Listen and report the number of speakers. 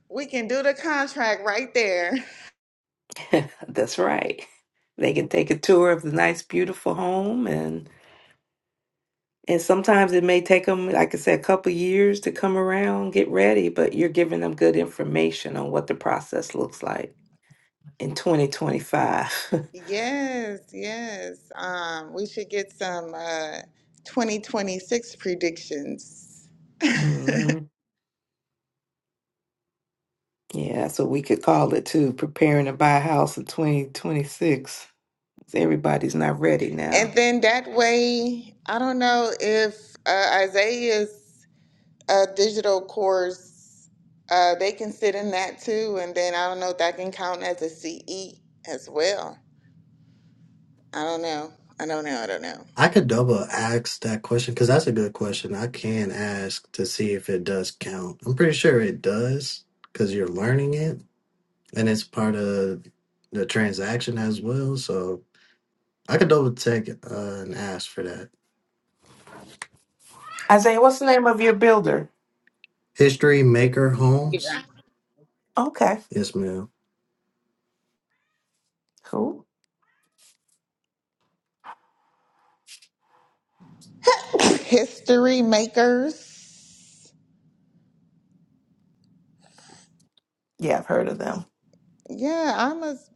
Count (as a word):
three